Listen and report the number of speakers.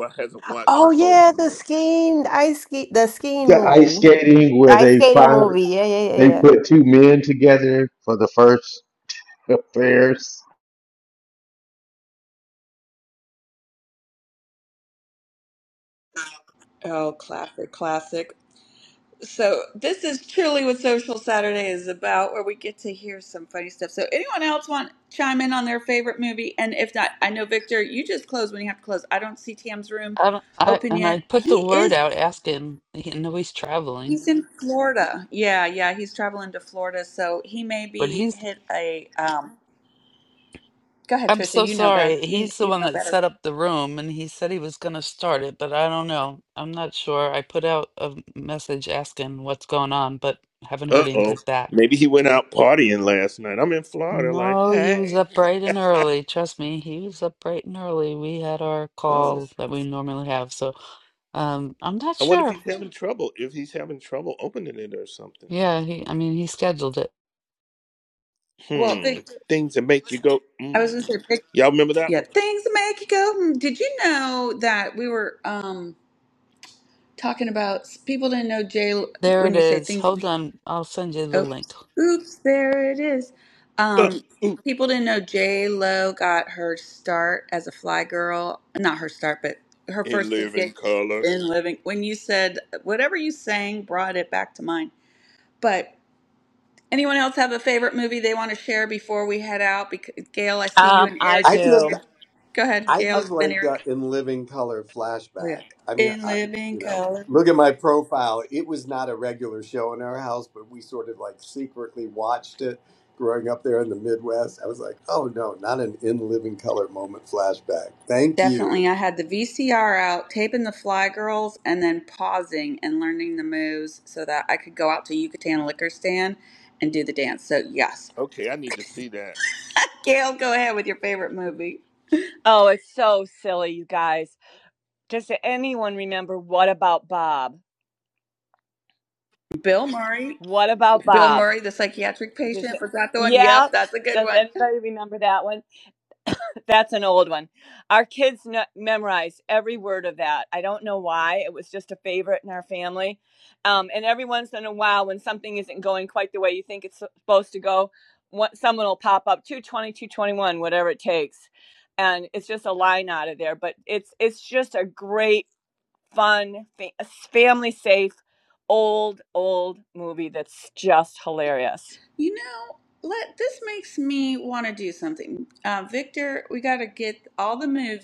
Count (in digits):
7